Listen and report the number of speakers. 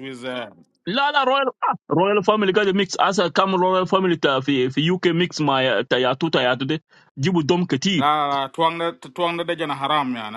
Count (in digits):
2